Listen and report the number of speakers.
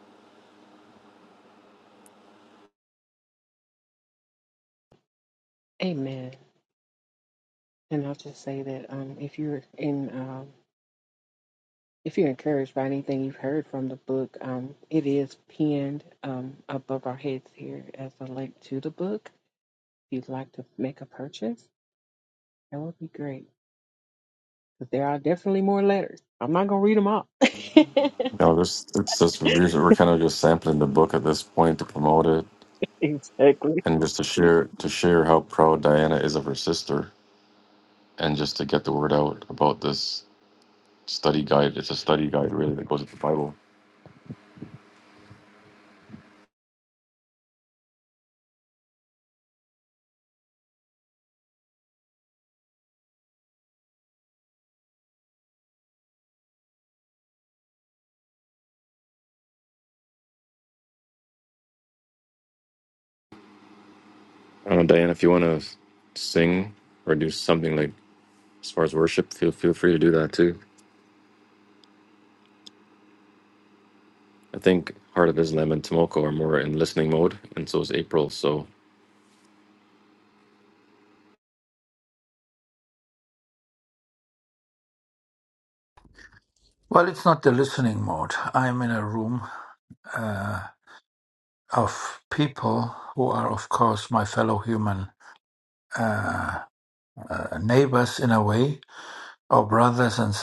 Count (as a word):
three